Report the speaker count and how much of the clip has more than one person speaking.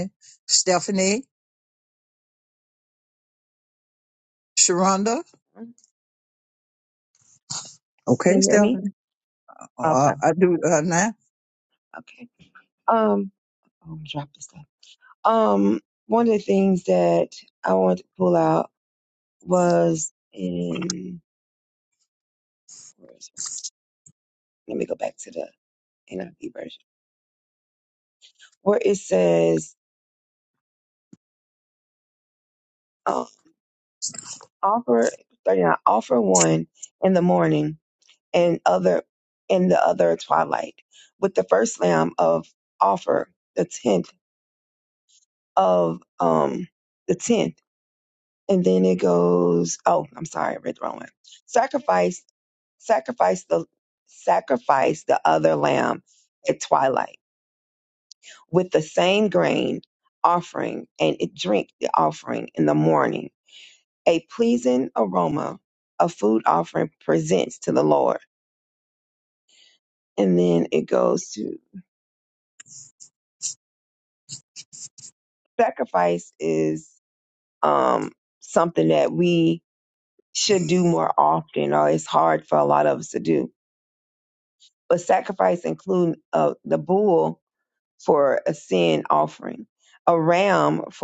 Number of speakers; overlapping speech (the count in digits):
2, about 1%